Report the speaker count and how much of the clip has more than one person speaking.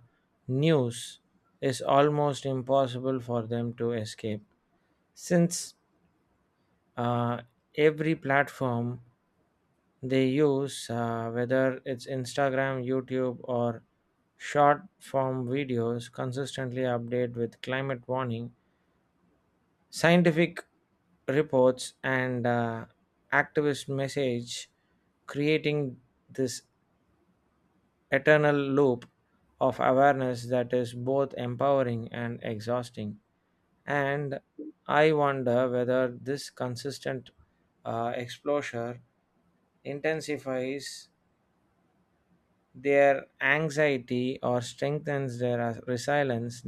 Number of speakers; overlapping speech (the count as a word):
one, no overlap